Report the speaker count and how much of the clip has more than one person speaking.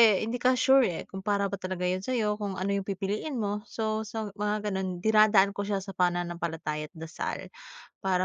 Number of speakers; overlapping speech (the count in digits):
1, no overlap